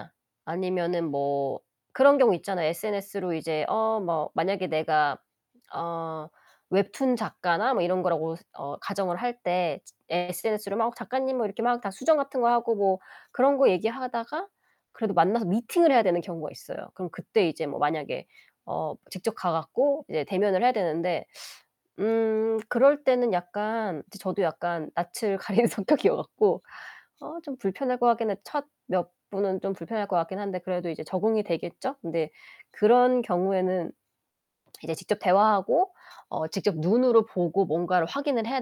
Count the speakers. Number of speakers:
1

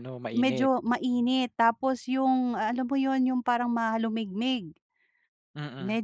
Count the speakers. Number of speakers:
2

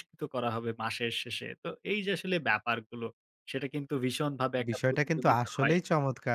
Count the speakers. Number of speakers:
2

